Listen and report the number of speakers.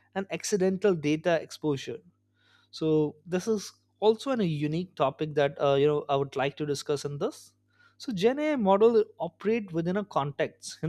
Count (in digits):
1